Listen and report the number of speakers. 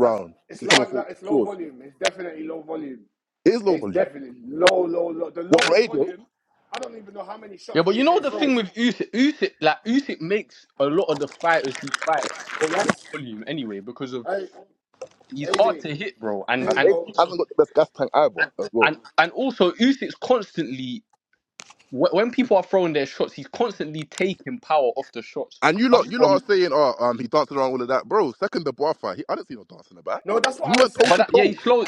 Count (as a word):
three